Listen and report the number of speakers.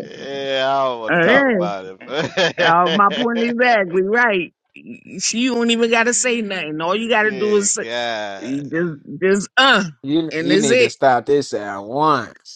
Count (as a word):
three